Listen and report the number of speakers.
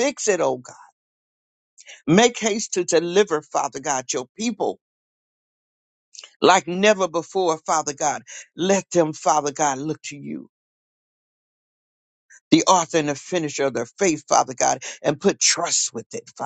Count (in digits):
1